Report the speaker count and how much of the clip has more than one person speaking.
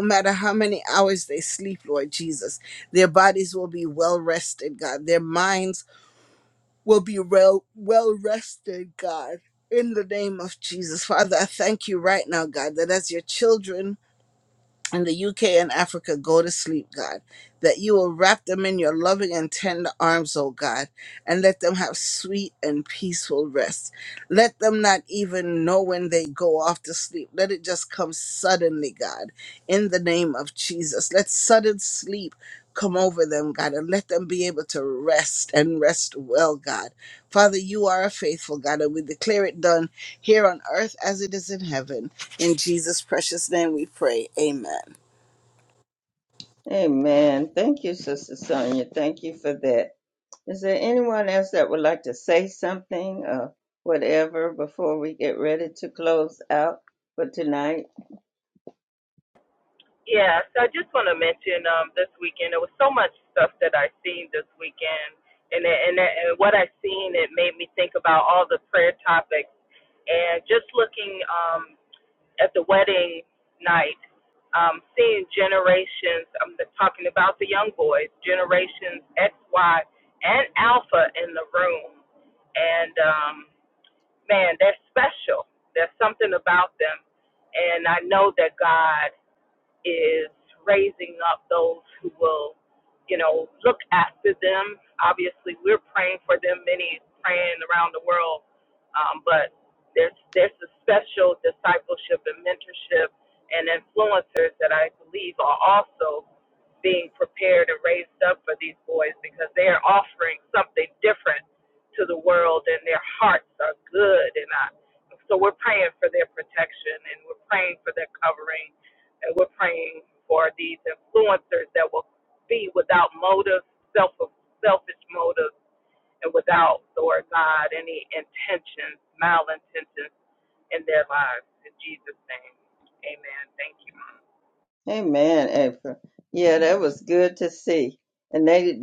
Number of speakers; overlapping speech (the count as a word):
three, no overlap